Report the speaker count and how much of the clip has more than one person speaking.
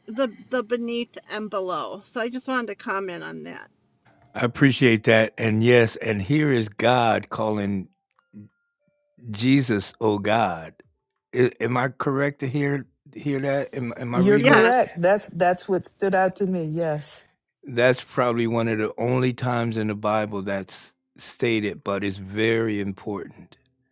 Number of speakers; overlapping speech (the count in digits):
3, about 3%